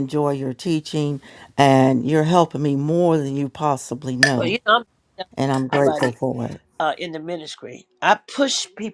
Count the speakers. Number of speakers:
2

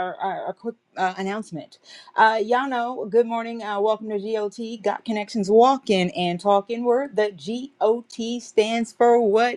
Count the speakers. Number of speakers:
1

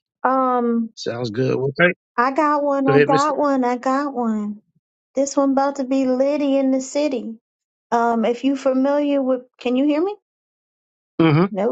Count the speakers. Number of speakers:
2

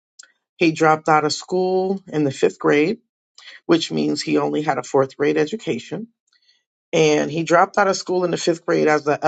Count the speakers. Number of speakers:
1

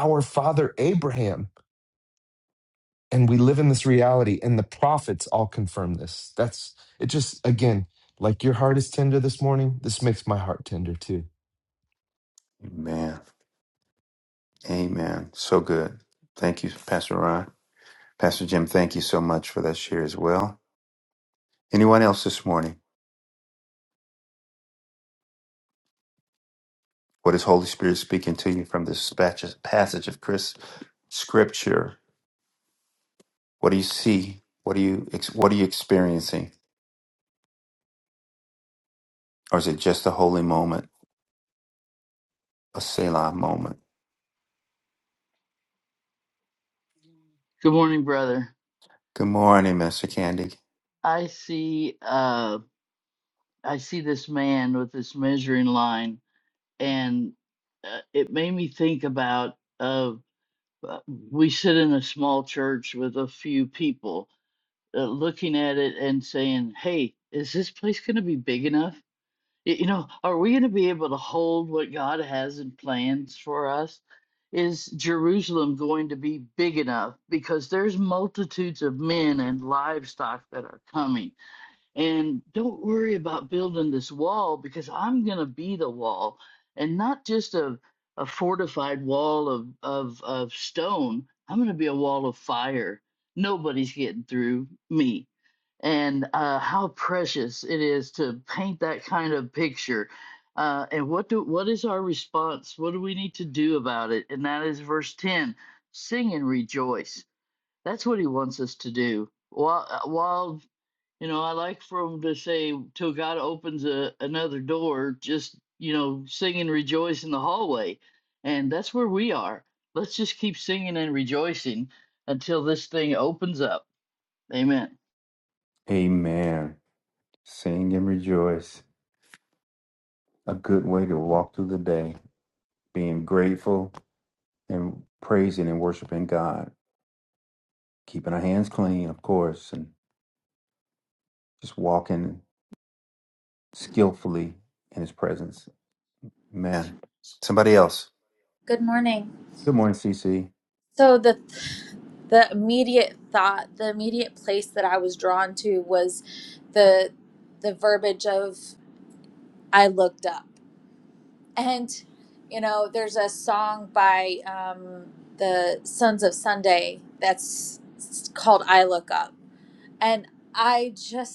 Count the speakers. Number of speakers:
4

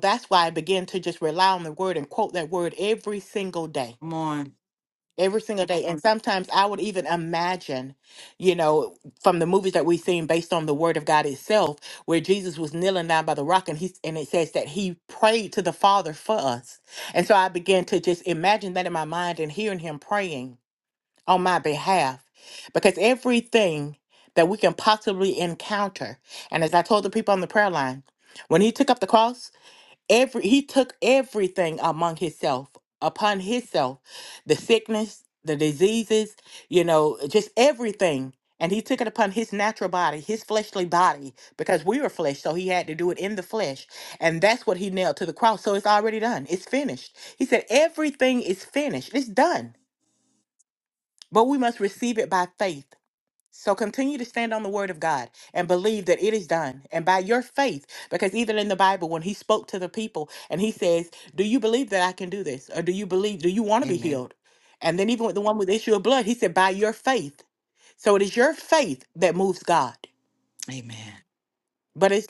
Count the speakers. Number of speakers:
2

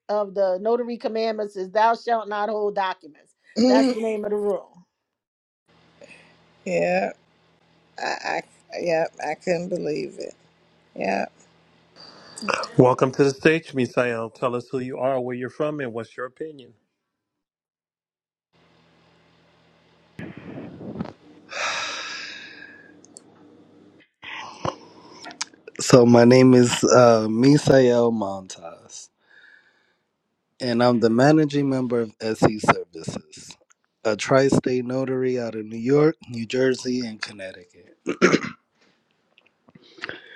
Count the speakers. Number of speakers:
4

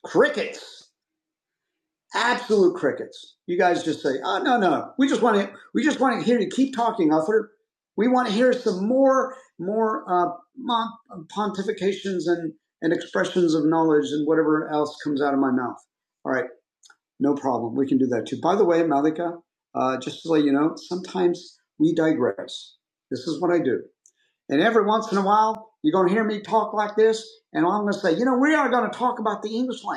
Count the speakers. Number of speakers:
1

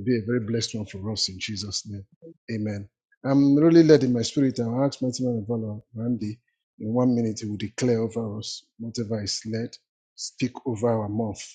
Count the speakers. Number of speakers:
1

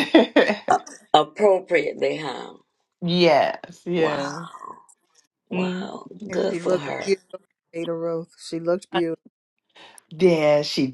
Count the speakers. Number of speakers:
3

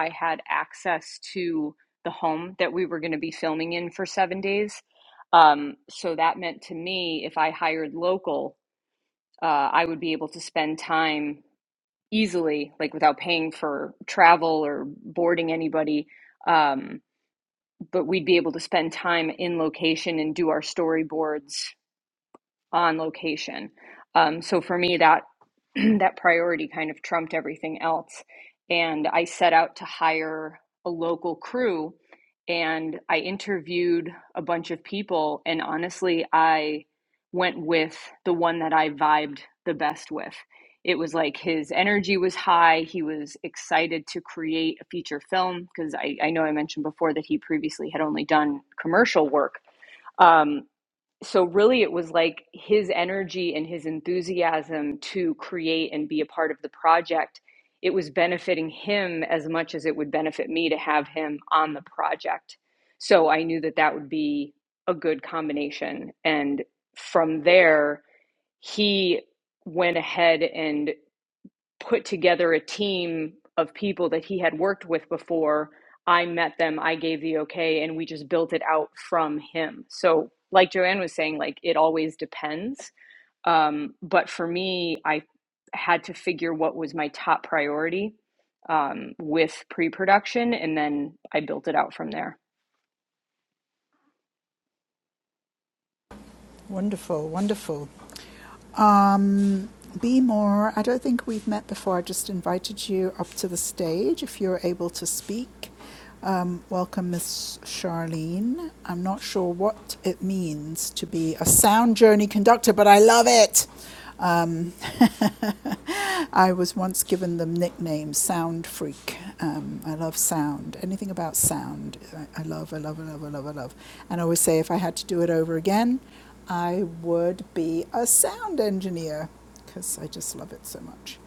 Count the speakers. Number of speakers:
2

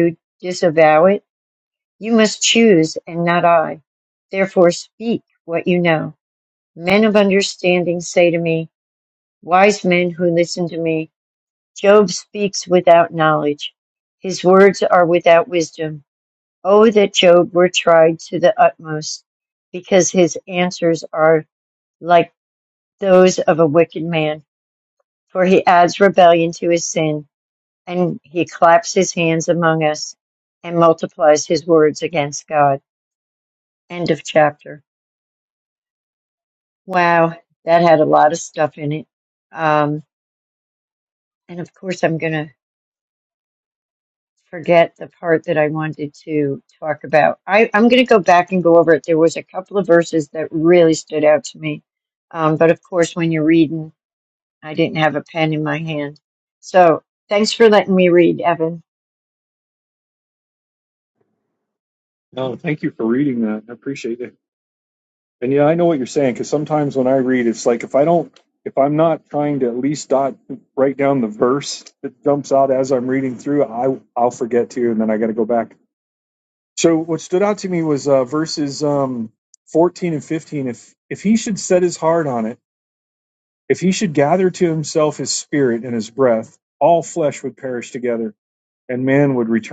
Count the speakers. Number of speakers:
2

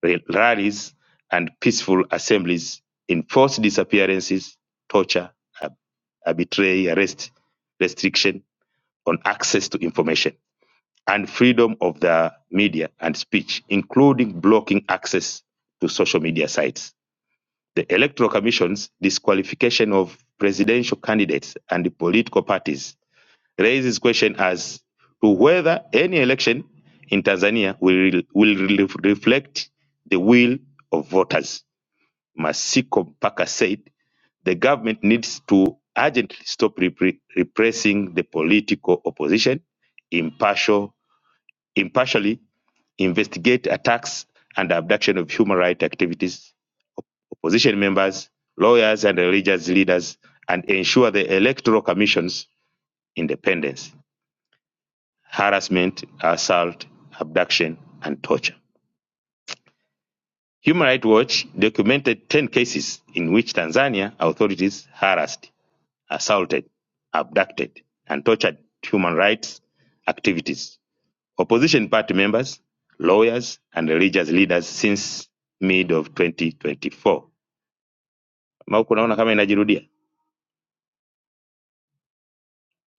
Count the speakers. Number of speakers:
1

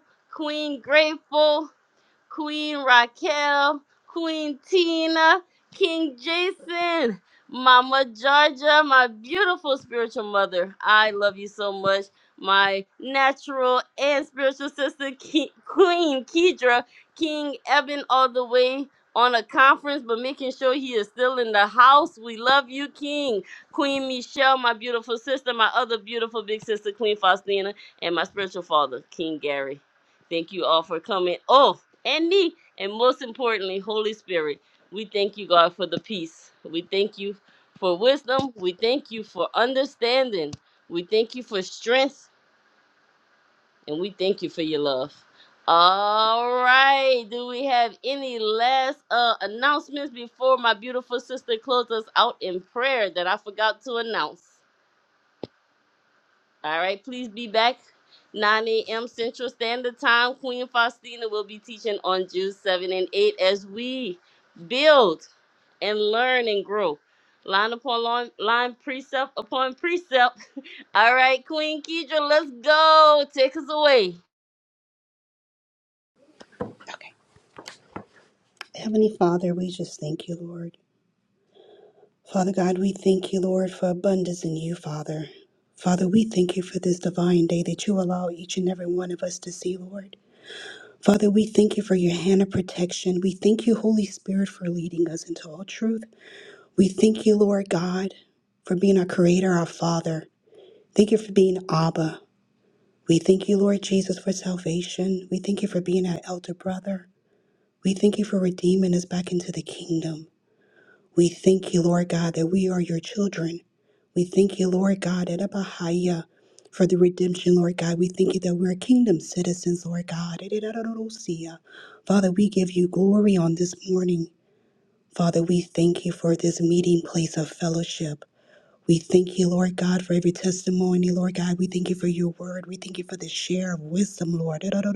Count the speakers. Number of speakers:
2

